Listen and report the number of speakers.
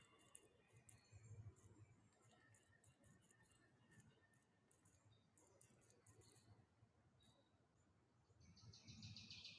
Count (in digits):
0